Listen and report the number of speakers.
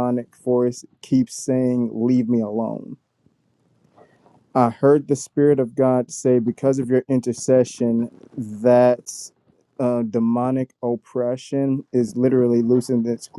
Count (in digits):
1